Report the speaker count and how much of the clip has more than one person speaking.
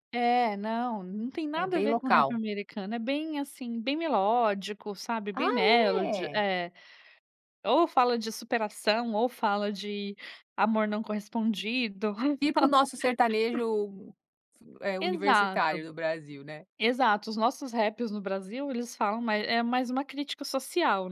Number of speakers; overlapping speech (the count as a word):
two, about 10%